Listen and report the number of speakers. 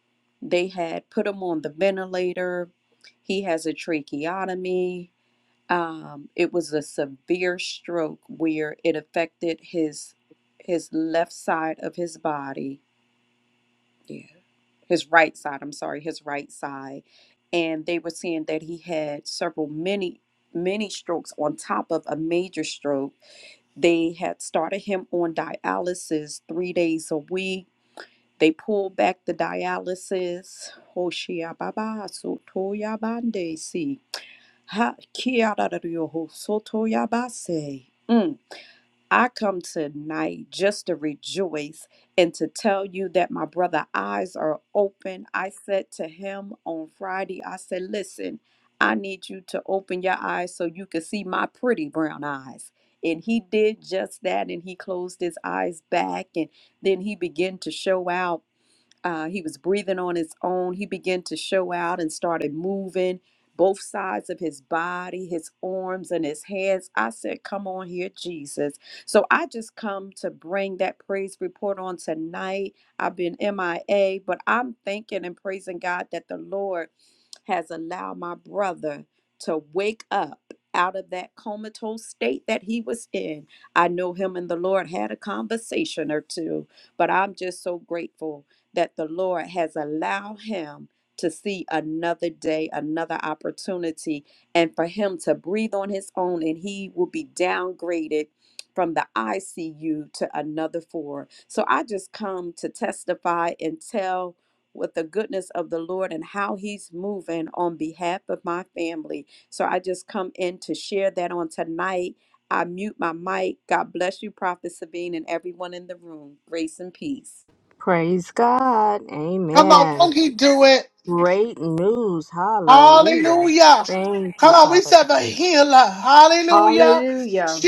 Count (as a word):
four